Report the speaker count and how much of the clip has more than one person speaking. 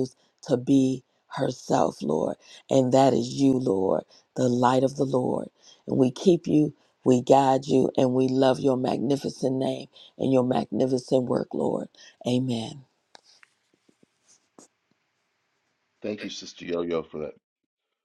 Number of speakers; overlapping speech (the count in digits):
2, no overlap